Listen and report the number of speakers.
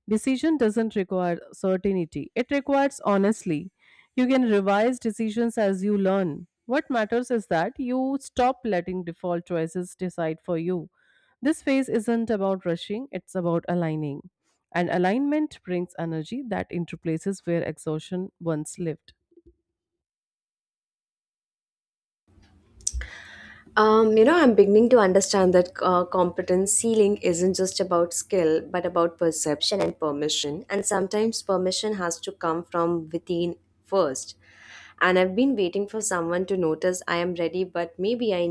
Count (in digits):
2